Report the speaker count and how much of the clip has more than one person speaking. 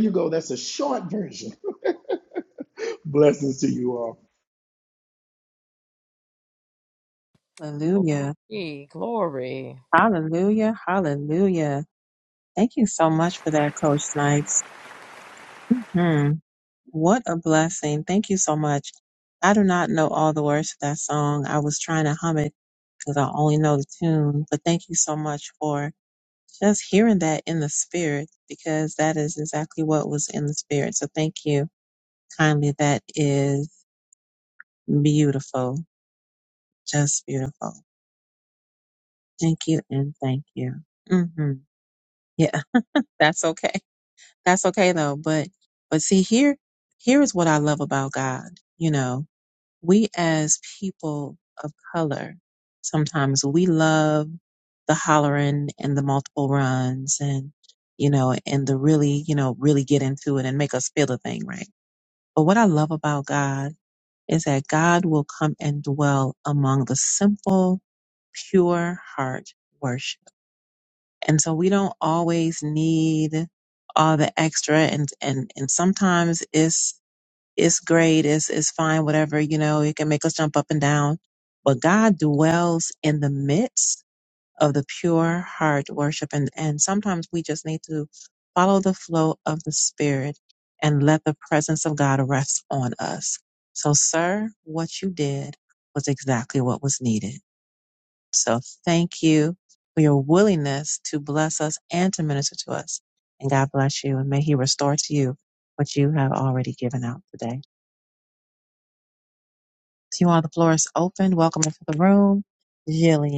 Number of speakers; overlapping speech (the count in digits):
3, no overlap